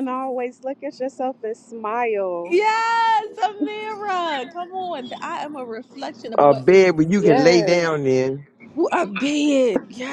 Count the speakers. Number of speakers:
three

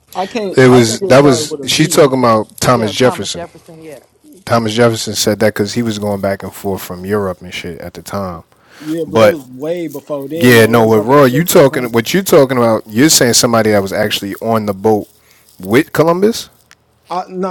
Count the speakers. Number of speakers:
three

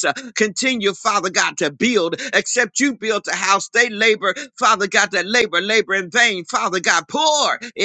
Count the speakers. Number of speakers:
one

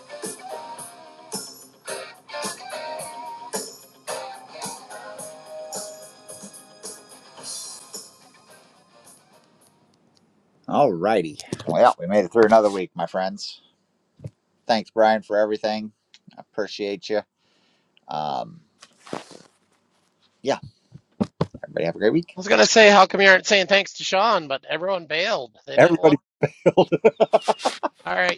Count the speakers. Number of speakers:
two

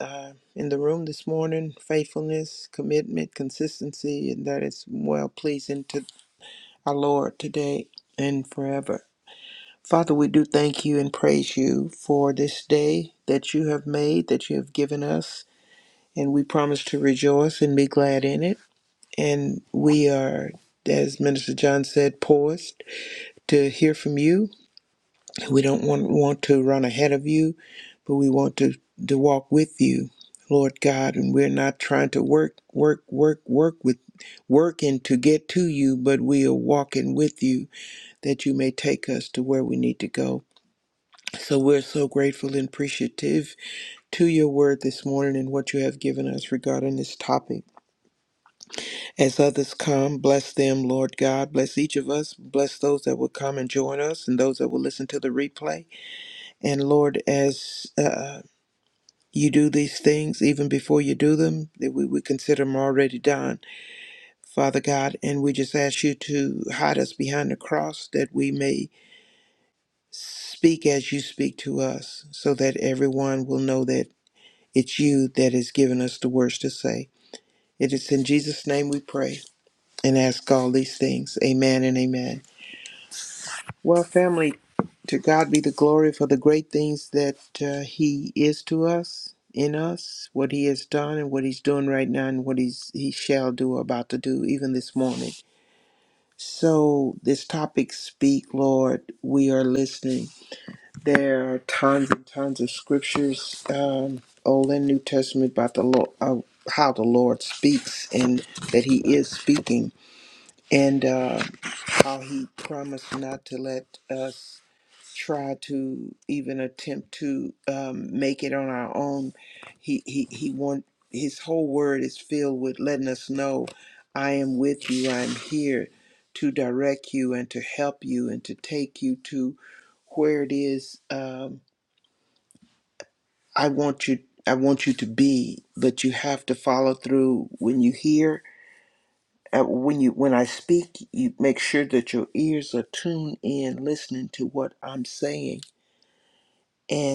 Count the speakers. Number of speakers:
one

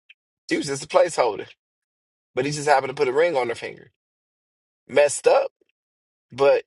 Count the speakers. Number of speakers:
one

